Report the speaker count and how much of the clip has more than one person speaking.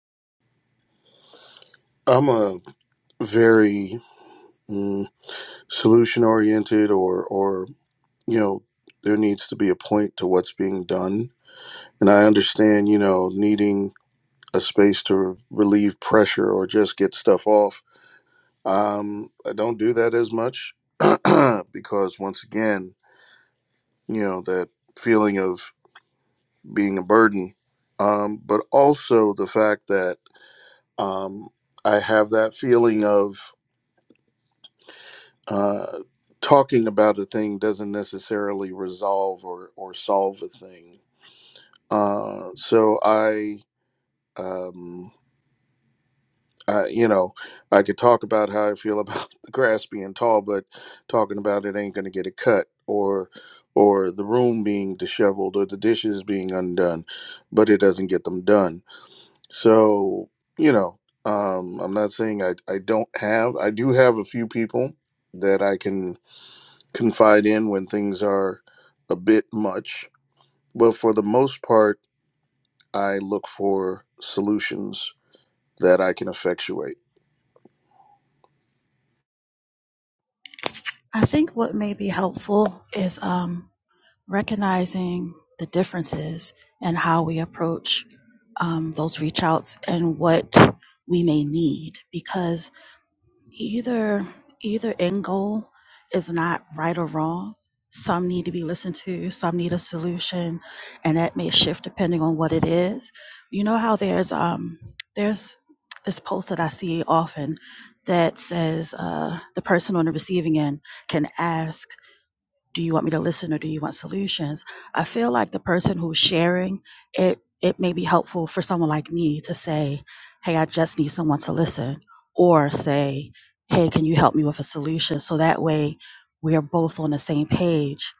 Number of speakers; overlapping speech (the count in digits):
2, no overlap